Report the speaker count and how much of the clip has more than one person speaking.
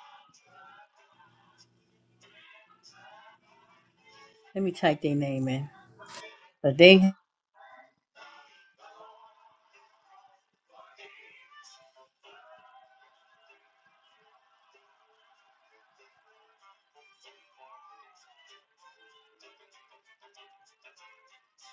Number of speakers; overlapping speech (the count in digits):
1, no overlap